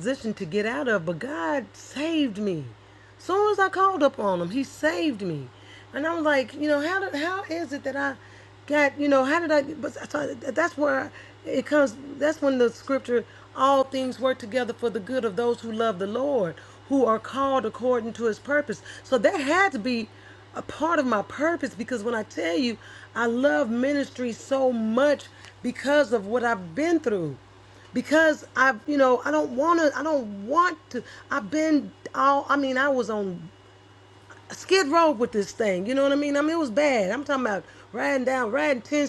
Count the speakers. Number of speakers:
1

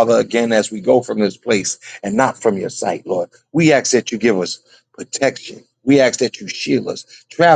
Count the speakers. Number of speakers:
1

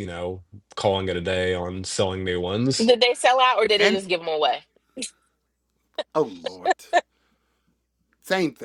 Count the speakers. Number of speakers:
3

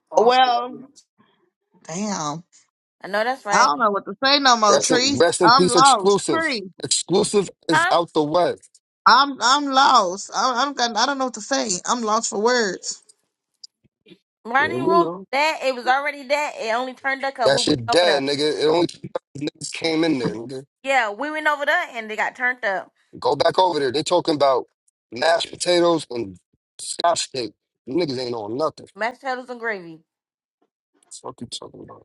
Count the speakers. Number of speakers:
3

